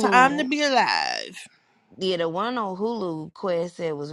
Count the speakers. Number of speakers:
2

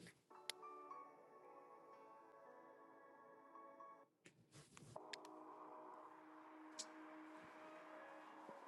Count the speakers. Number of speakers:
0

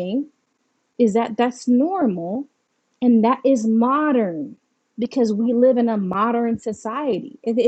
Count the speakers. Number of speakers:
1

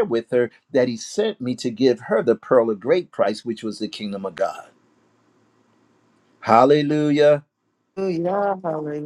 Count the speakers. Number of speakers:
2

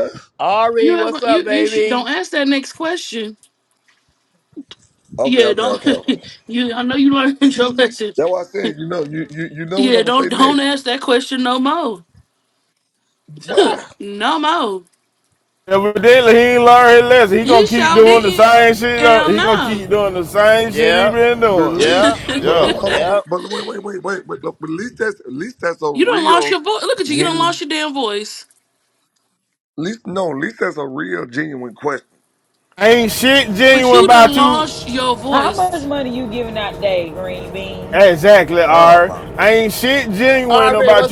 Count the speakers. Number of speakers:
5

